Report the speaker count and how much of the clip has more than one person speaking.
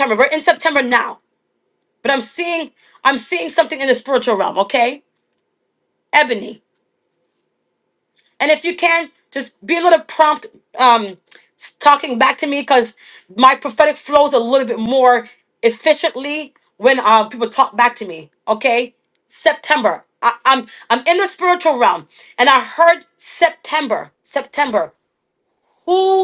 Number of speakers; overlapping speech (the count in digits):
1, no overlap